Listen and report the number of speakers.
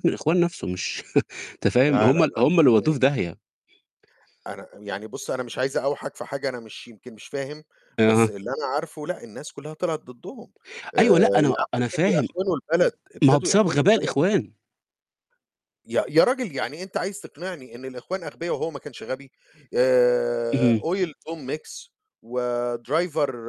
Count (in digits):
2